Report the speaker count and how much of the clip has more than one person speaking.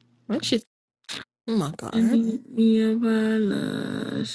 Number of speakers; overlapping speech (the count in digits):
2, about 6%